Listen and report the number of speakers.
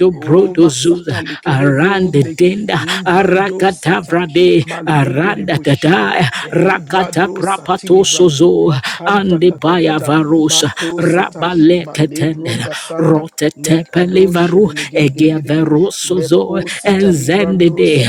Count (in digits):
2